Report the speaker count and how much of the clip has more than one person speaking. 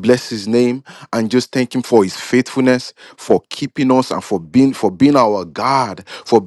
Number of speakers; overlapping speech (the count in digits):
1, no overlap